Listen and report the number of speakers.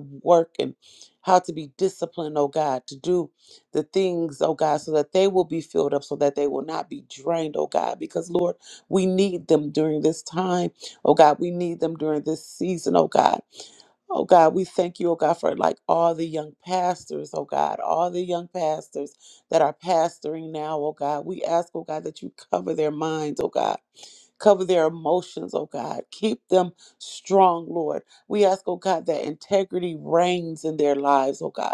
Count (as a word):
one